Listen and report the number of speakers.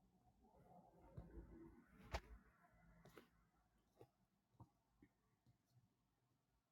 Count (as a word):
zero